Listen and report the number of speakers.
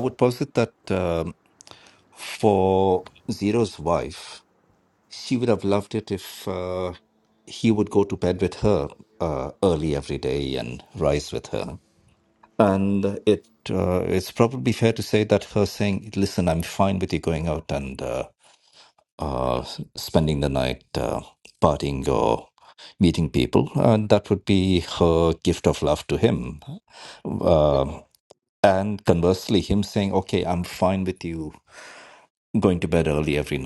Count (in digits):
1